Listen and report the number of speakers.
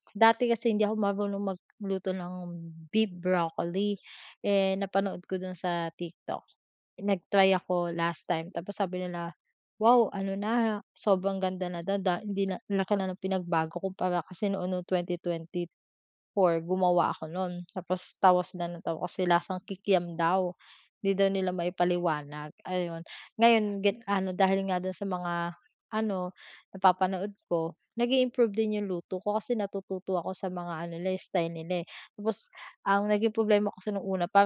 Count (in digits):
1